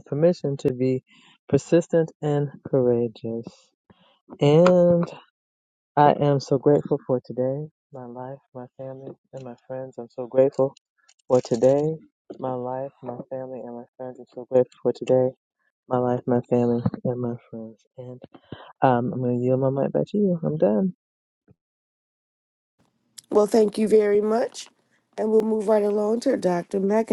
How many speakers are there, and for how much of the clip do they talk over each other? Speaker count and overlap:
2, no overlap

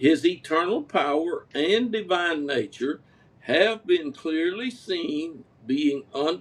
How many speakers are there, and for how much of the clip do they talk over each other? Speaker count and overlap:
1, no overlap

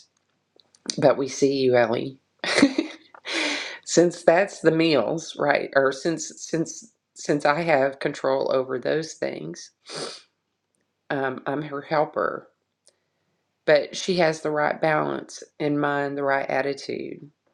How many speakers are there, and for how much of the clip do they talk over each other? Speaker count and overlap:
1, no overlap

